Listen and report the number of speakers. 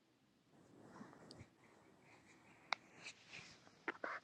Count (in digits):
0